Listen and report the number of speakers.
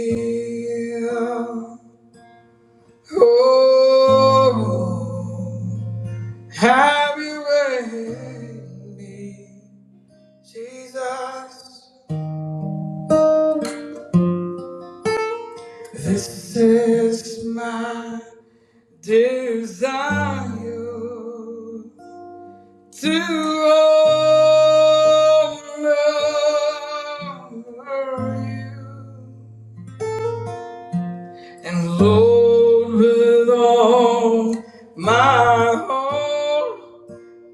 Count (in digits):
1